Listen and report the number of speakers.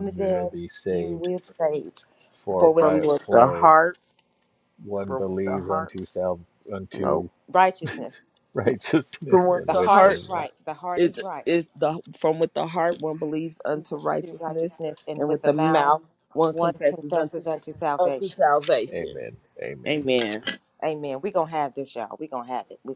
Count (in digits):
3